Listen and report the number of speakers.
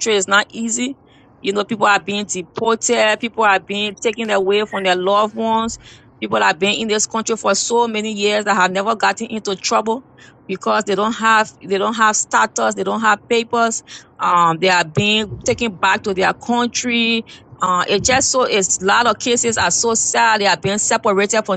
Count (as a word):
one